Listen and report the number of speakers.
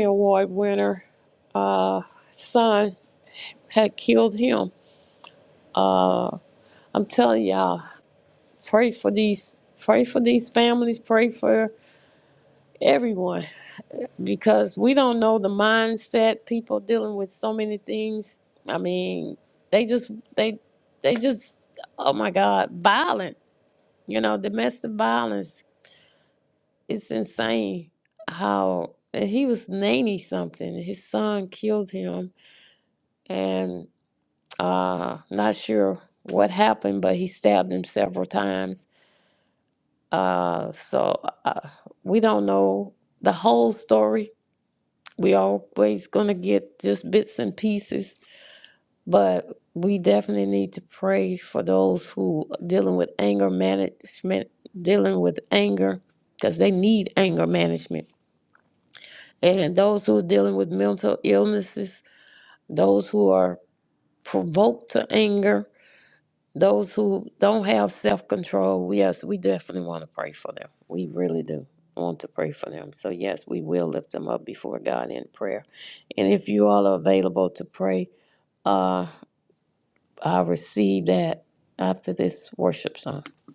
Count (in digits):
1